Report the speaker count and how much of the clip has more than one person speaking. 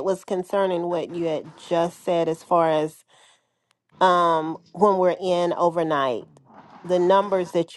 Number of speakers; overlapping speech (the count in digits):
1, no overlap